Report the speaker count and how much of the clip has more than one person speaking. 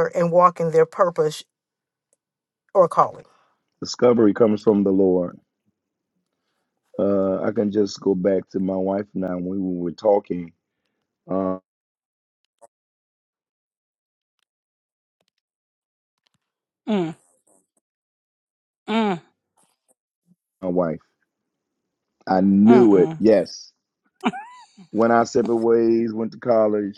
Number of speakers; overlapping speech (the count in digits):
3, about 2%